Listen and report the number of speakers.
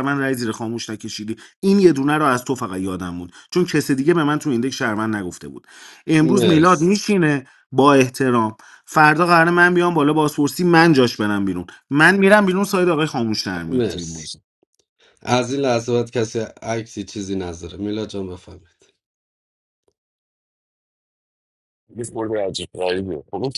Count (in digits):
3